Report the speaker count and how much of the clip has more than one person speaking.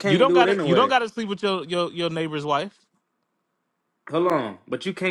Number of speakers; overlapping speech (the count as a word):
two, about 17%